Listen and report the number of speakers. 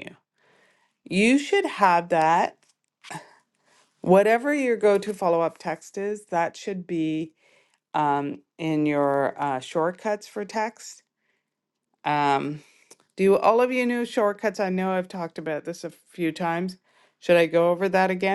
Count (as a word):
one